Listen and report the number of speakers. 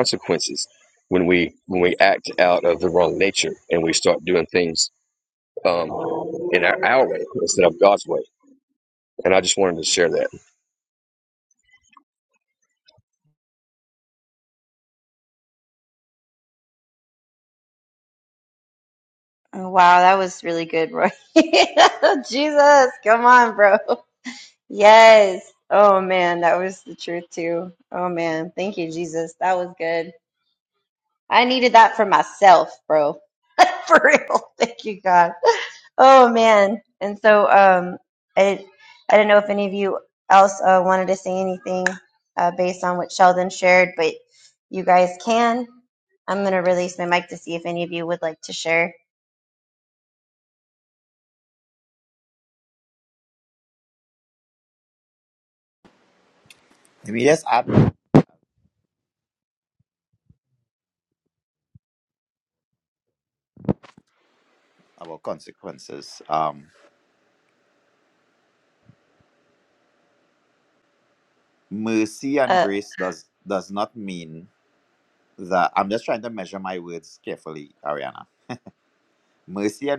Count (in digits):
3